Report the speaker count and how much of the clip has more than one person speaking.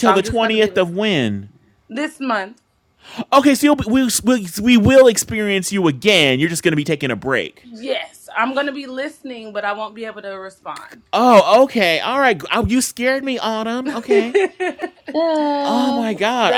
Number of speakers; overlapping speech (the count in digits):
3, about 11%